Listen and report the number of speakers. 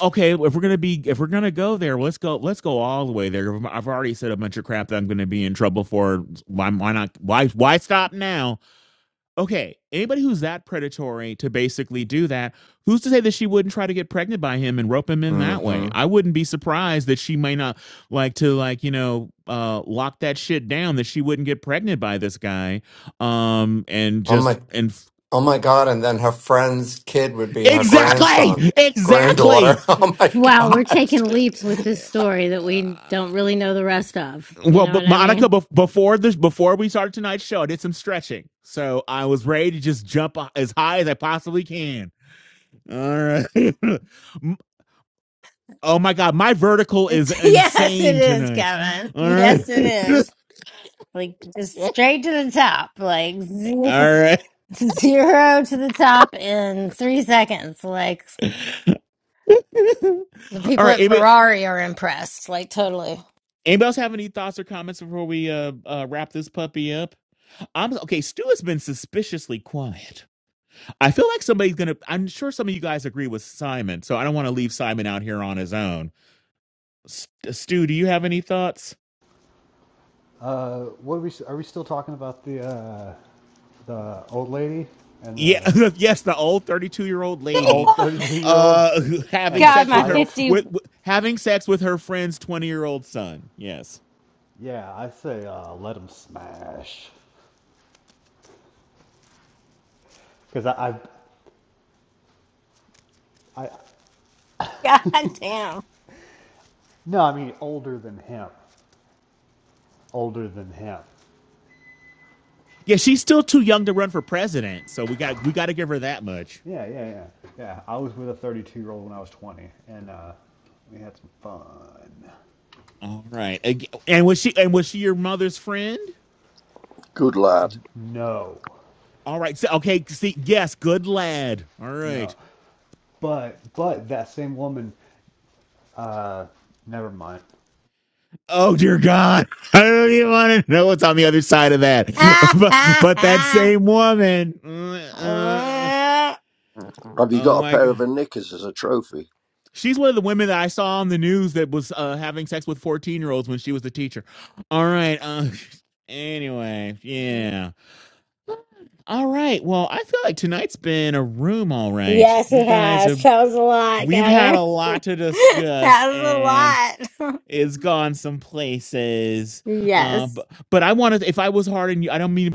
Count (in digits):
5